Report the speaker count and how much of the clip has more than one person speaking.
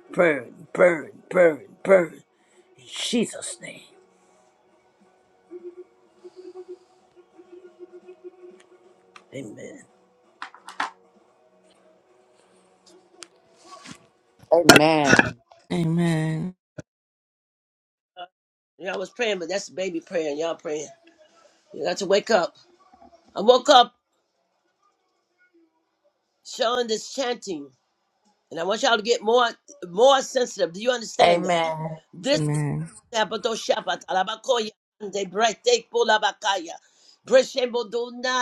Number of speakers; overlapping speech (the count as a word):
three, about 1%